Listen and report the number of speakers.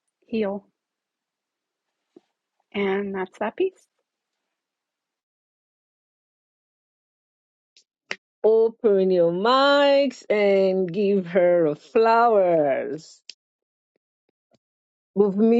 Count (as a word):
two